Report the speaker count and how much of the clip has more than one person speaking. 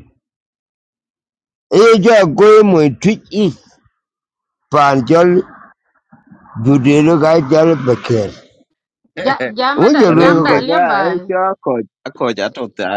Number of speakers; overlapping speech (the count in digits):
3, about 12%